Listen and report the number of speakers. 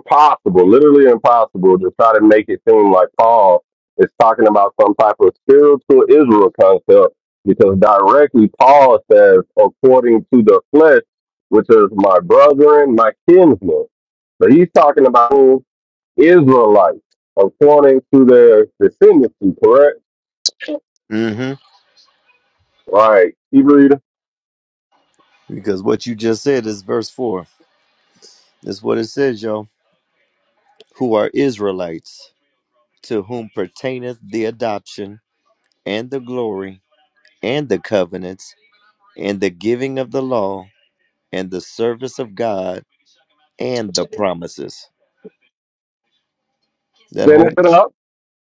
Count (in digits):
2